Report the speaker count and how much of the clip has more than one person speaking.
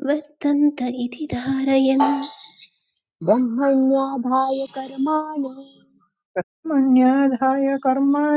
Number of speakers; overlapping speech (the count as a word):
three, no overlap